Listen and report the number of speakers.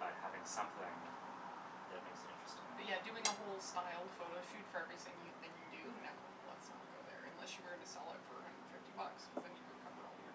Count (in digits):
2